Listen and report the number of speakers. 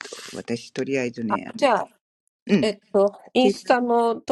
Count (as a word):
two